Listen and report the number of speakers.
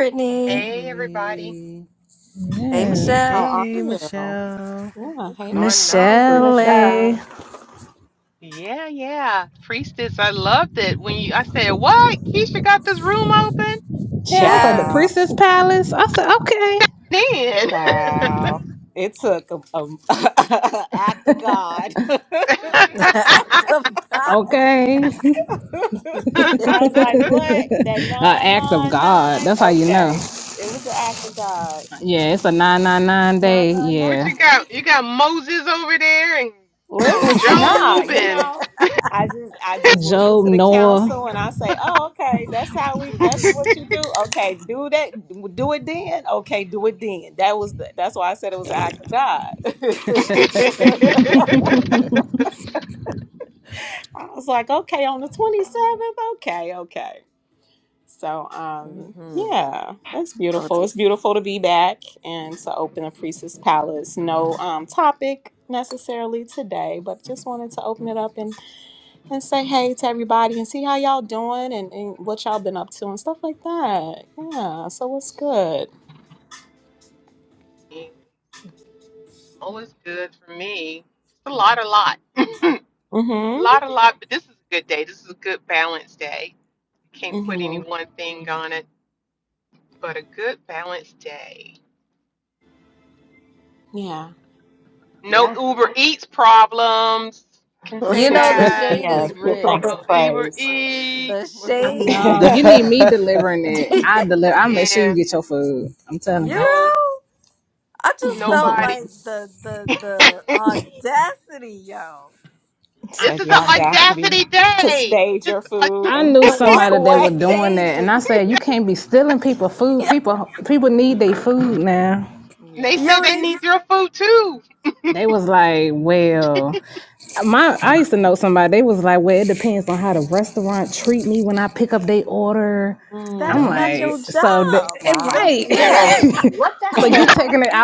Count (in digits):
6